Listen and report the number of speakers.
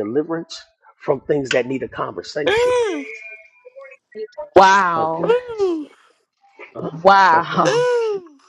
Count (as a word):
three